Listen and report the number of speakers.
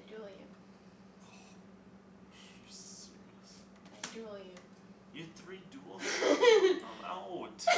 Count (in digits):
2